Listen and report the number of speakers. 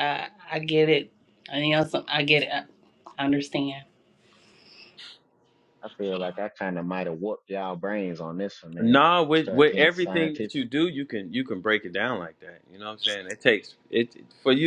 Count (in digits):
3